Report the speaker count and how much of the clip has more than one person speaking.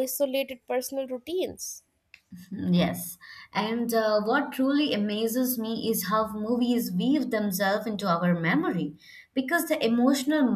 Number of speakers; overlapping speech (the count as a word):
two, no overlap